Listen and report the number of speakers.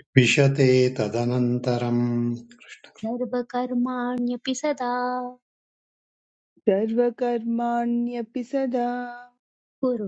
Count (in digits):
3